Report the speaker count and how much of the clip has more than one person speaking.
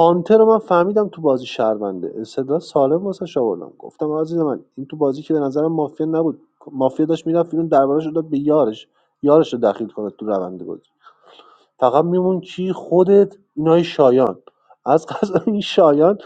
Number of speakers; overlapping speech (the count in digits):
1, no overlap